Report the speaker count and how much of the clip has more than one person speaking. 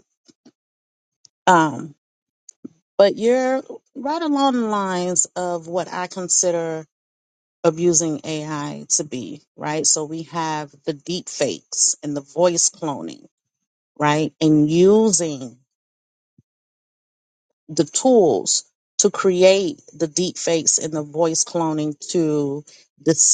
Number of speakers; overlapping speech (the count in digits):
1, no overlap